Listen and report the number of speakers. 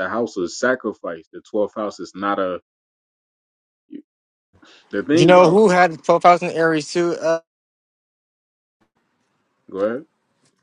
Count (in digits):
2